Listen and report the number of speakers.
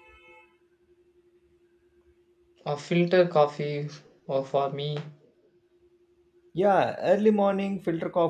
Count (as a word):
two